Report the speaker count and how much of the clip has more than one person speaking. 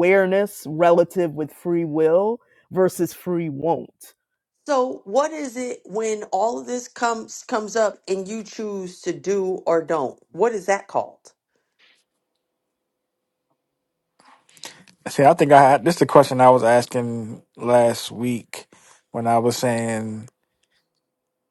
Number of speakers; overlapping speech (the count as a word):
three, no overlap